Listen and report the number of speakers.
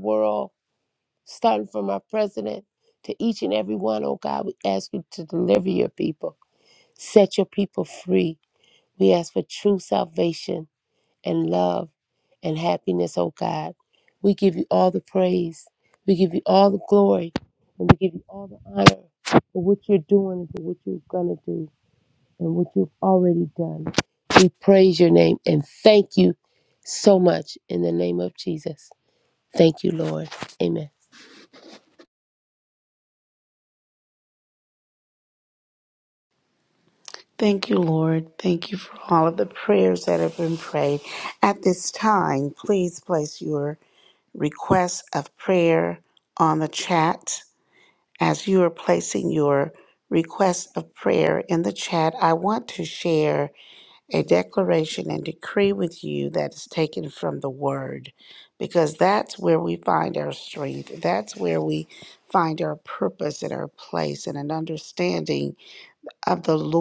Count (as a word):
two